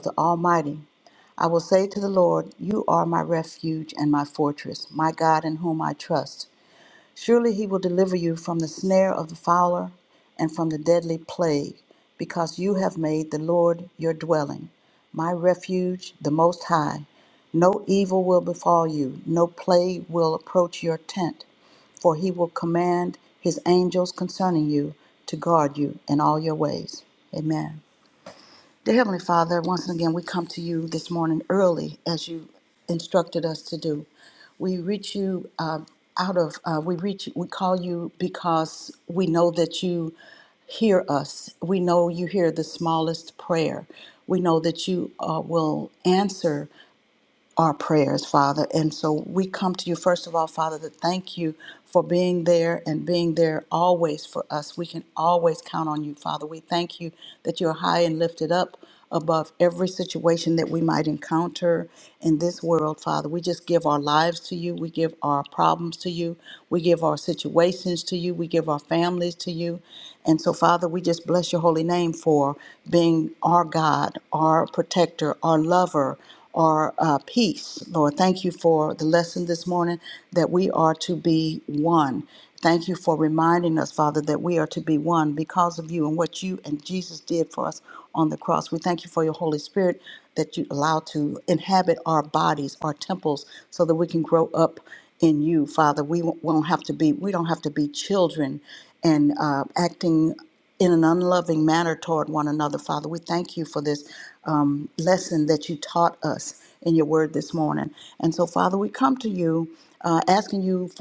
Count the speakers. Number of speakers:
1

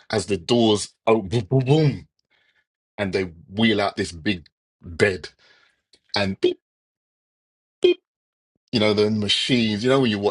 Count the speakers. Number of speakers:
1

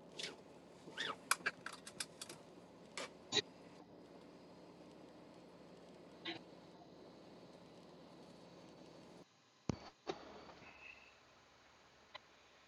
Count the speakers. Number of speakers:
0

